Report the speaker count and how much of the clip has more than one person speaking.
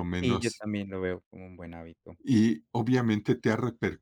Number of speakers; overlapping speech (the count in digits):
2, about 9%